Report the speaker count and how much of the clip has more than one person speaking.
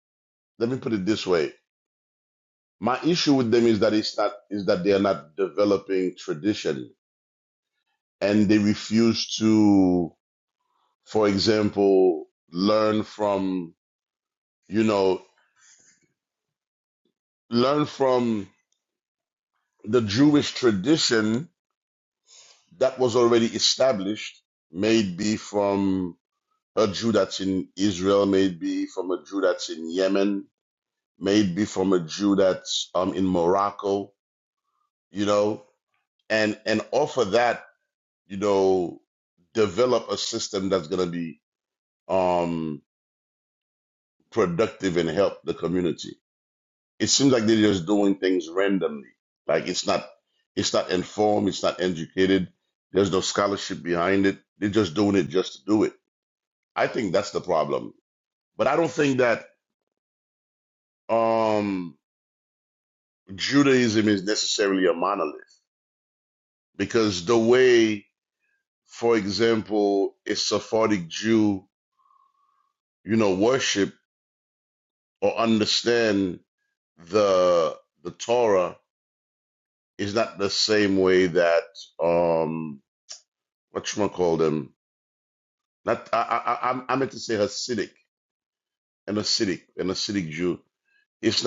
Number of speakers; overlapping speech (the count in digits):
1, no overlap